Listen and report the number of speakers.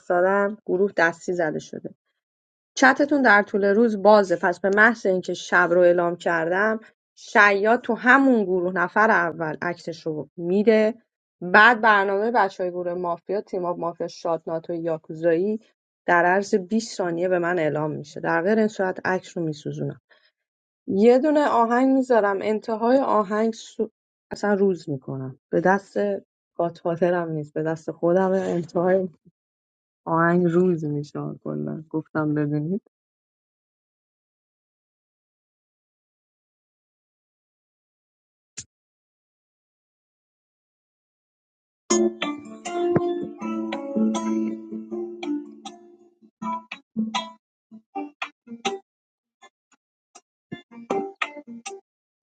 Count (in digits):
1